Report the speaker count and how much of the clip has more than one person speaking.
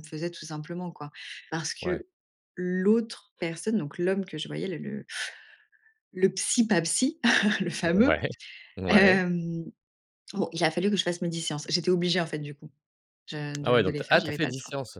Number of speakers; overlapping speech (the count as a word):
two, about 13%